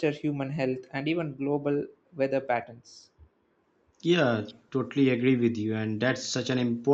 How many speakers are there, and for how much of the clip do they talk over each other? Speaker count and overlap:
2, no overlap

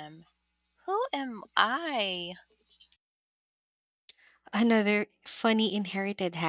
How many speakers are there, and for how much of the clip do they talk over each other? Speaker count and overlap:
2, no overlap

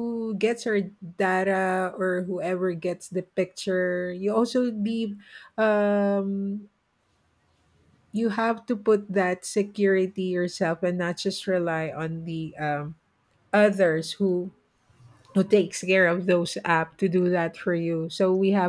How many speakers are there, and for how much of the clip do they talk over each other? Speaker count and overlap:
1, no overlap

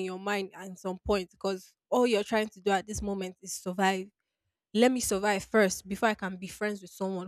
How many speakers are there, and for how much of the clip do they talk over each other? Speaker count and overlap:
1, no overlap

